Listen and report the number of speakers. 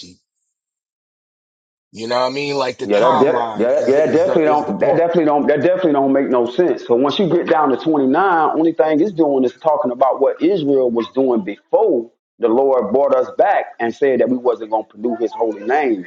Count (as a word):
two